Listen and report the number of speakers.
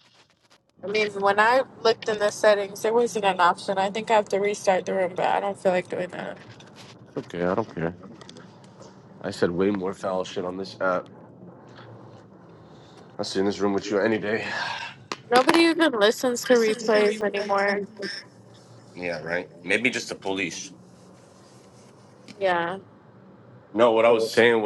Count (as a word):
two